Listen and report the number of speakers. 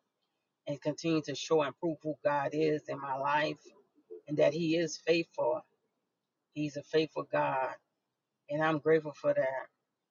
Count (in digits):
1